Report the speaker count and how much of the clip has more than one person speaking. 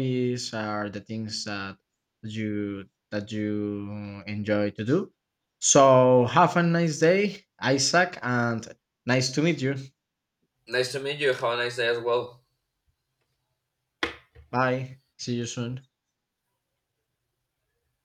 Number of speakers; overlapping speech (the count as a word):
two, no overlap